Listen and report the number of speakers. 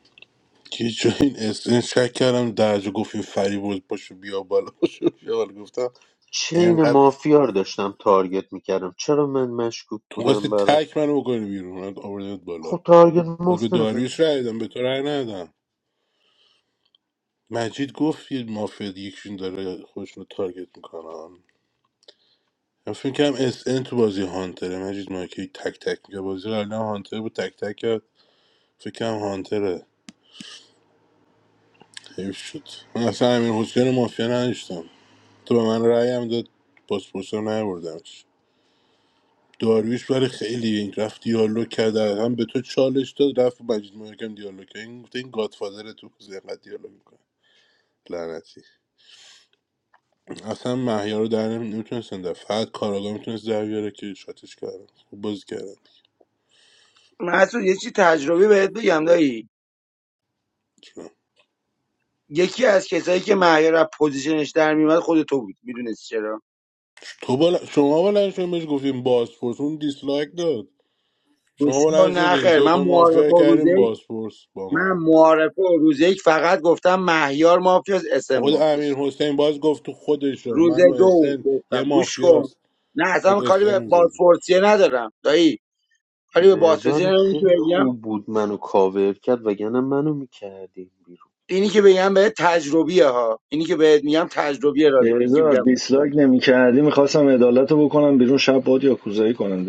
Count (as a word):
four